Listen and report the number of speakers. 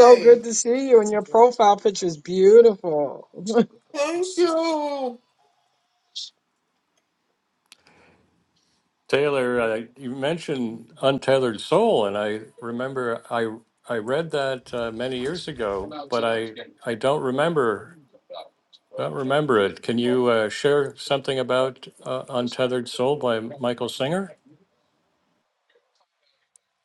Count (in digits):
3